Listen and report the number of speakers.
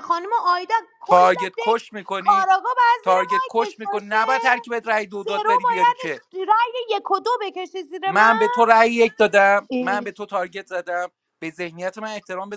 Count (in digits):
2